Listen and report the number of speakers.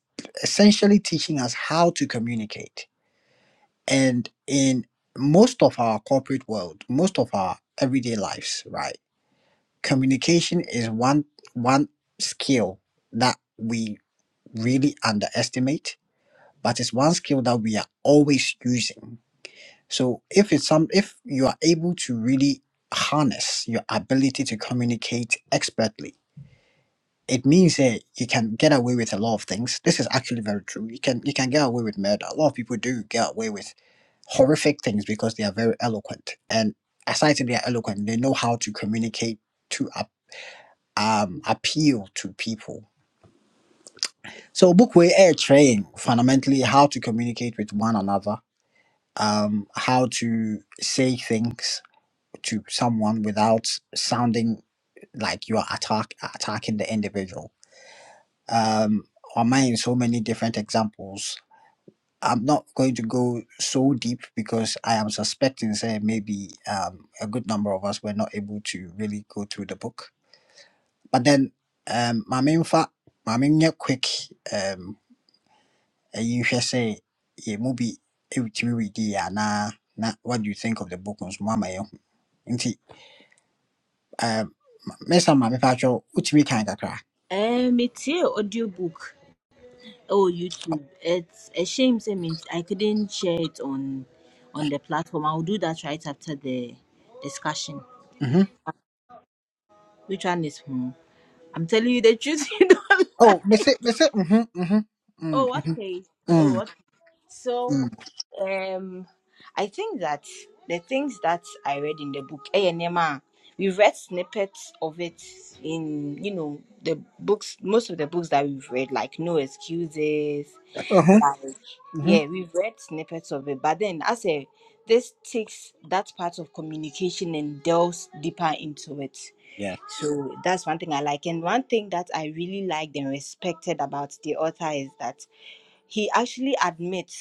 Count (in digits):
2